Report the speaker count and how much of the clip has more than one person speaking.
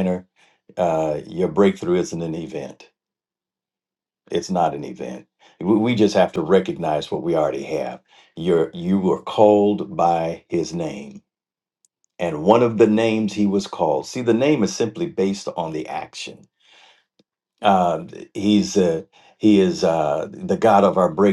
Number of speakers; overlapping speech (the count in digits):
1, no overlap